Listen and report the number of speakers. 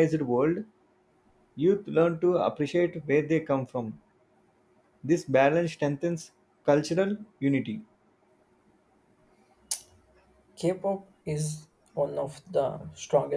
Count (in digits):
2